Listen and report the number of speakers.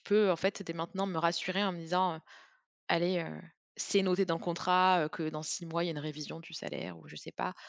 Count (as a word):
one